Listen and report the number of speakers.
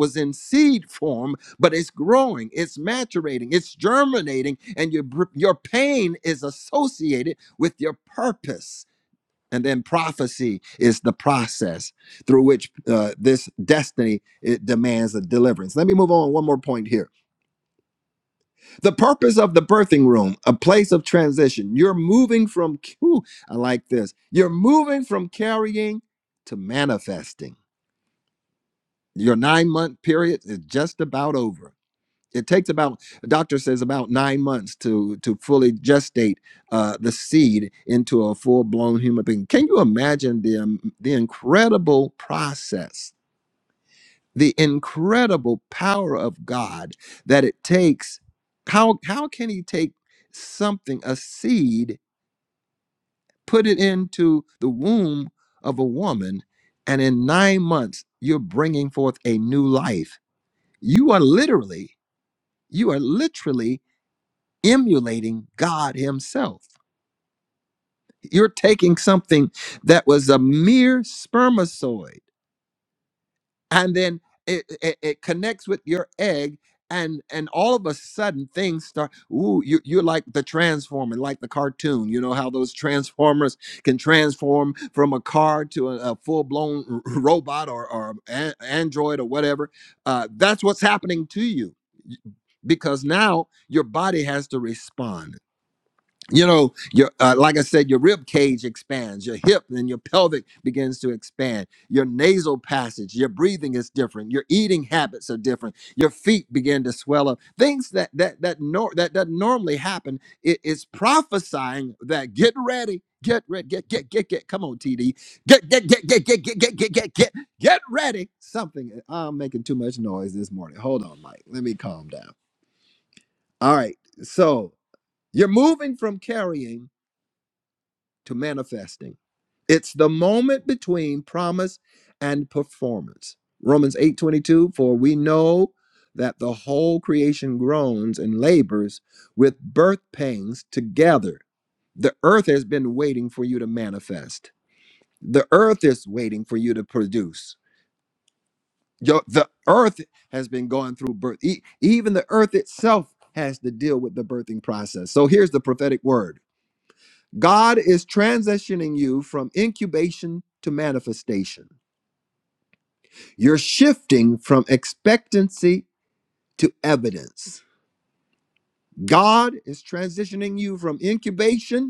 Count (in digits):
1